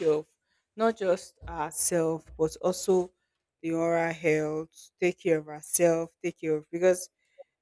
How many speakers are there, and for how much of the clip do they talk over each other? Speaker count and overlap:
one, no overlap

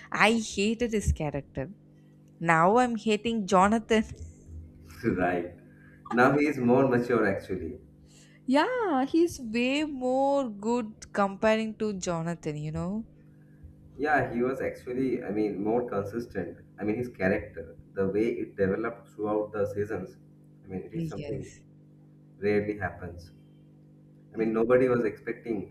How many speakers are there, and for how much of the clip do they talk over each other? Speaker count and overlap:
two, about 2%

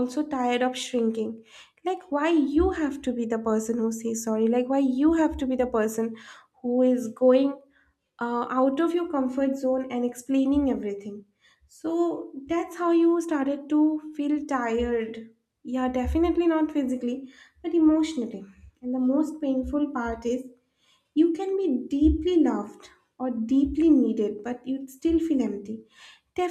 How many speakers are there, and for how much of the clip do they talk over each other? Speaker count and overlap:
one, no overlap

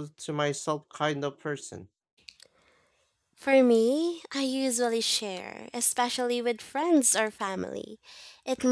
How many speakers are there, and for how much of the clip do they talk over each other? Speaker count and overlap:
two, no overlap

